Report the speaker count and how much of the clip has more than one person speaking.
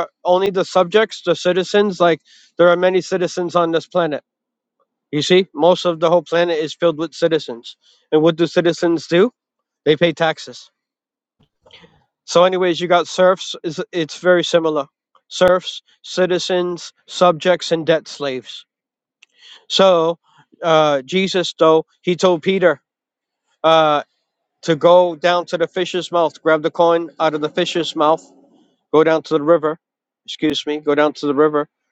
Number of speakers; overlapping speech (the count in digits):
1, no overlap